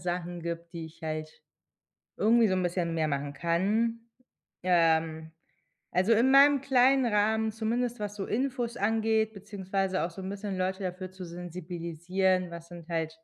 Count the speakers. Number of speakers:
1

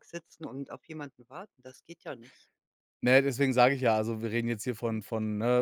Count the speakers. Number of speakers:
2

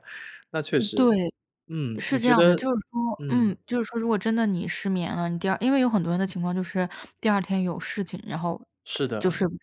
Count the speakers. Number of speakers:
2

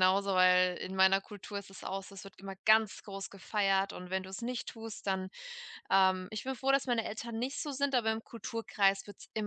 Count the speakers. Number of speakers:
1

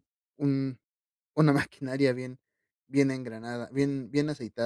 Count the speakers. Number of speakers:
1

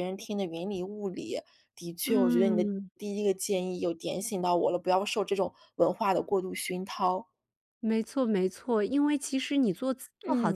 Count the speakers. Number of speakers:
2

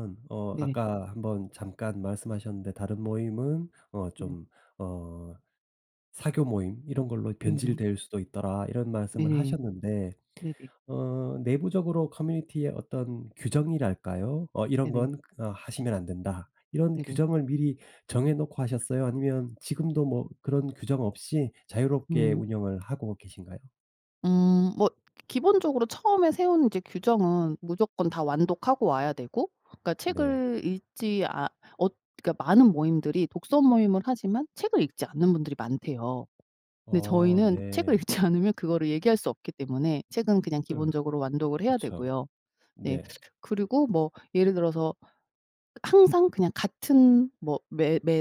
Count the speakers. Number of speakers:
2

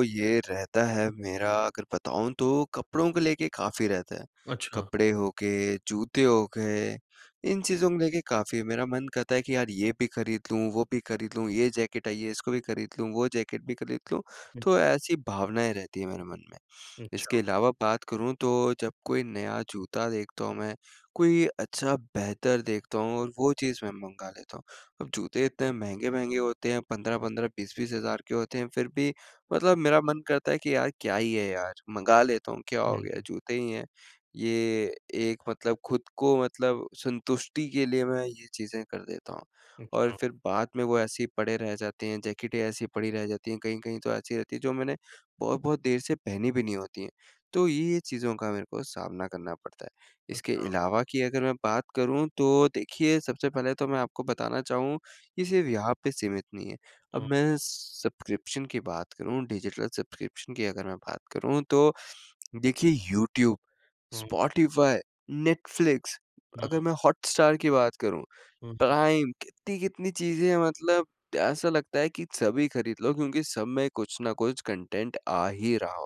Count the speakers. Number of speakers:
2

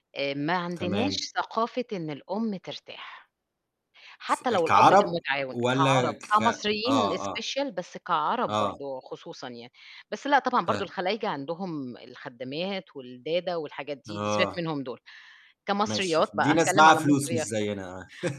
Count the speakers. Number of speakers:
2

